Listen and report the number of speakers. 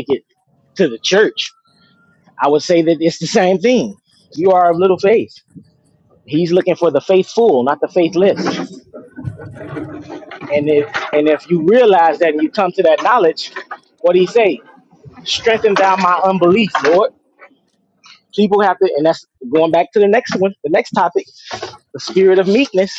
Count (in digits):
1